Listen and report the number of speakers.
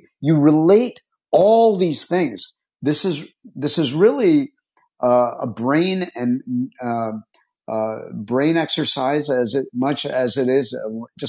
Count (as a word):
one